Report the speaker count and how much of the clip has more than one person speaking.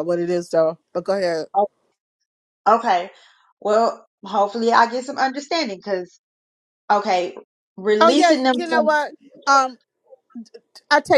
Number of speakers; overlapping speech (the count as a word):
two, about 8%